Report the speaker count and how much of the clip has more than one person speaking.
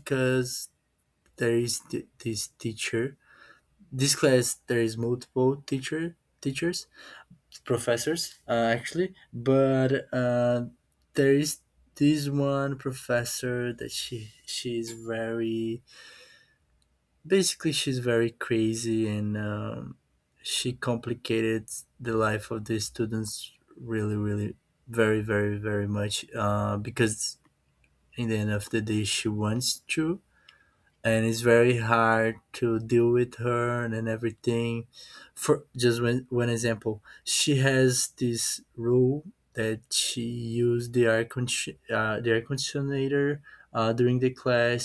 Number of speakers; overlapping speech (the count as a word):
one, no overlap